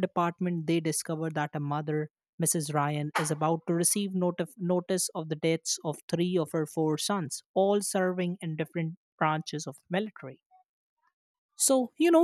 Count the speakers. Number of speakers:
1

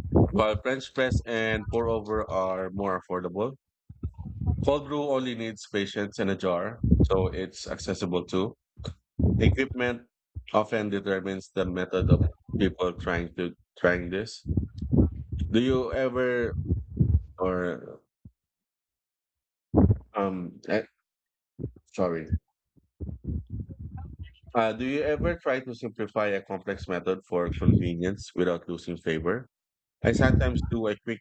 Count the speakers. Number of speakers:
1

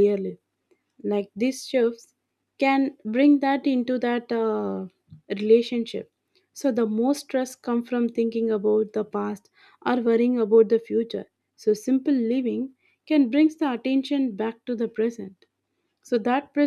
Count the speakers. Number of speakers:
1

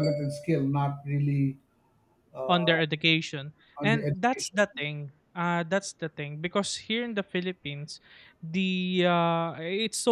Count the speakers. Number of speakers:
2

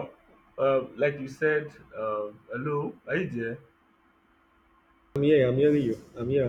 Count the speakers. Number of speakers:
2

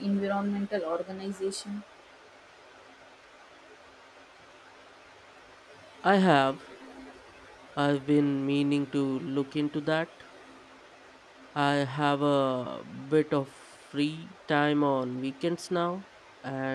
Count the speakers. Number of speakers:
2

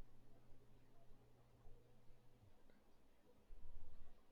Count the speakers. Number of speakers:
0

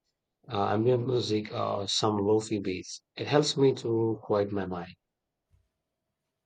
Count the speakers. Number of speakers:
1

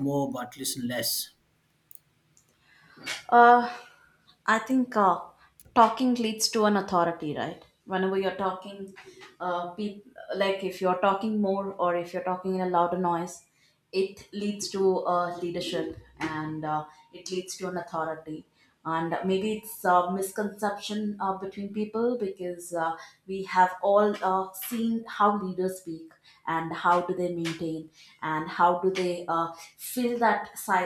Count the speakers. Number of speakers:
2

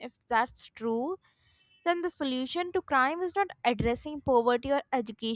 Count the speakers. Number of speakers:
1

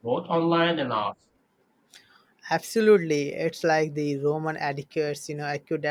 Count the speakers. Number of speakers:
2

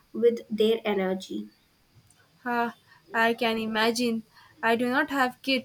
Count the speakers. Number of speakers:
2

